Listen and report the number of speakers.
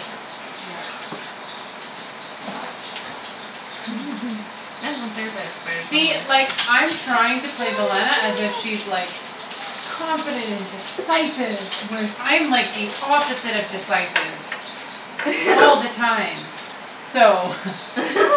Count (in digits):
2